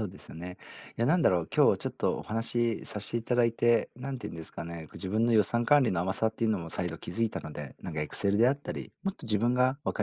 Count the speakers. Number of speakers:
1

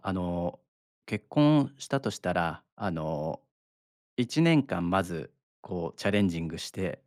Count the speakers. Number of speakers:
1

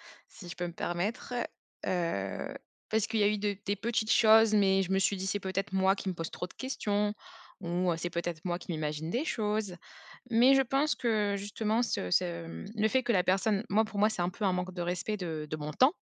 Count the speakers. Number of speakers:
1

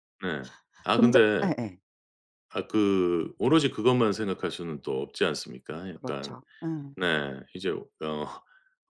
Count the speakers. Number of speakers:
2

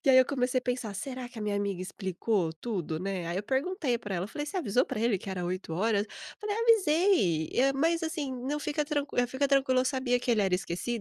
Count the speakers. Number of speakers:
1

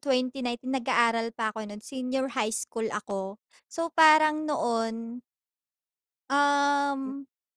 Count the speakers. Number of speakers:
1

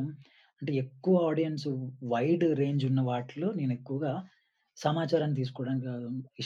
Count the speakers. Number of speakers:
1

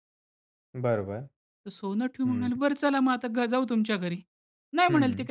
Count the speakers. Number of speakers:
2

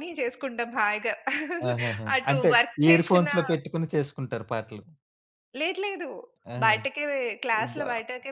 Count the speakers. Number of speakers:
2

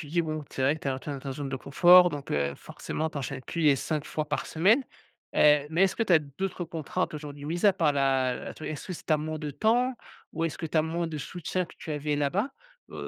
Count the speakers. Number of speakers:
1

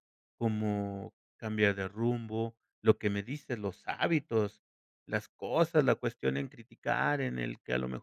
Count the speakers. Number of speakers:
1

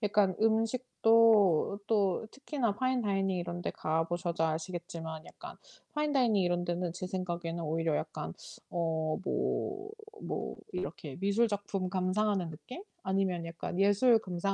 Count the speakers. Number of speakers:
1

